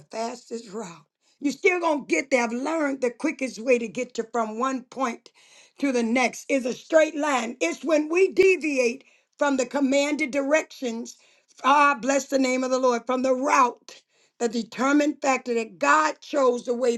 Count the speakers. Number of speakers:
1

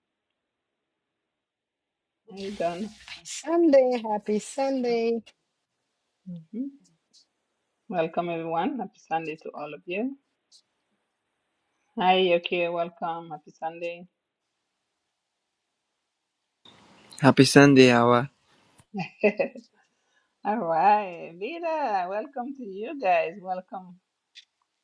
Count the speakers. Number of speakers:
3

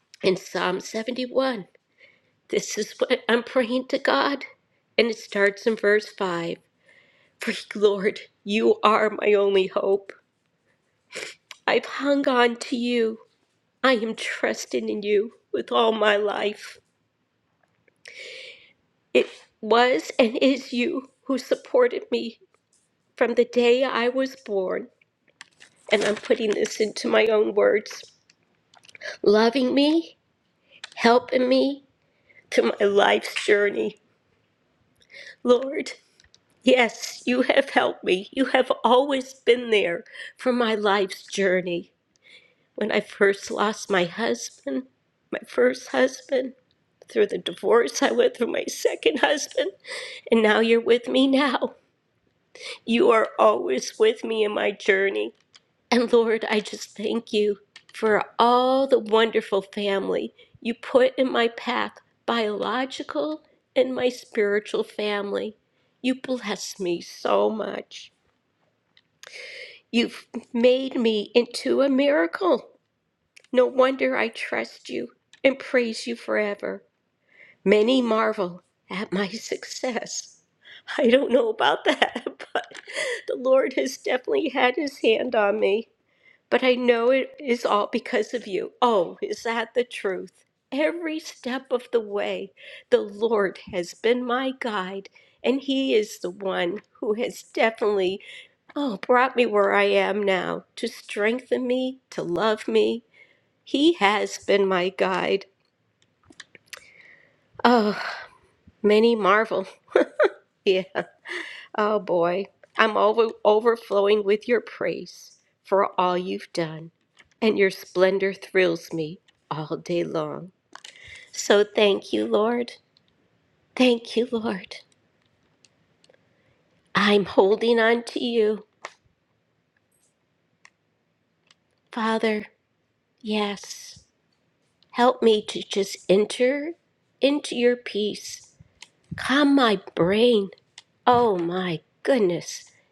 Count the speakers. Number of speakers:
1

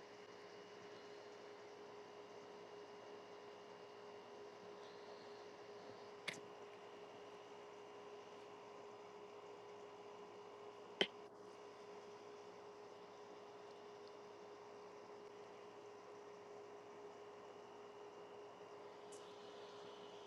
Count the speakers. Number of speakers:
0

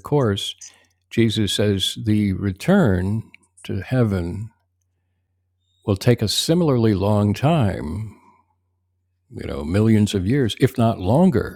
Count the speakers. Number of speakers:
1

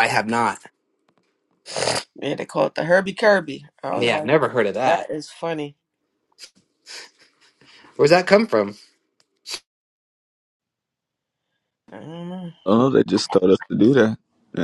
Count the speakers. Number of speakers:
3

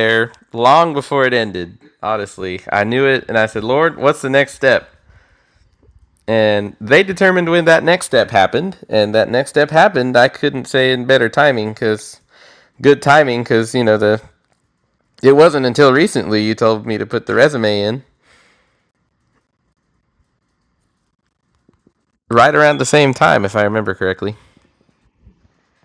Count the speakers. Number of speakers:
1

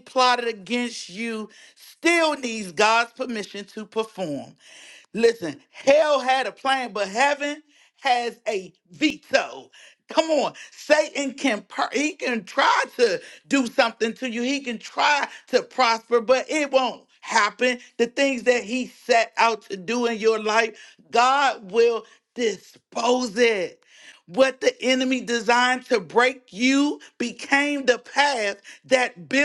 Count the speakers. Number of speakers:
1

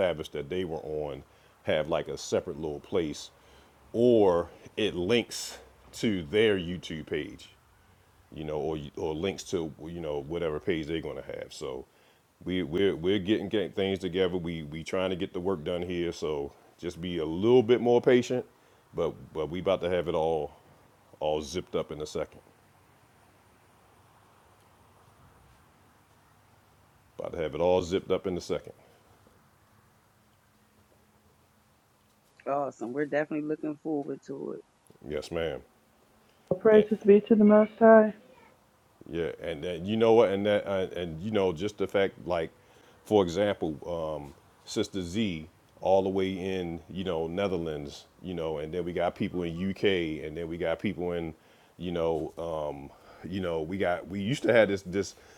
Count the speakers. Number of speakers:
3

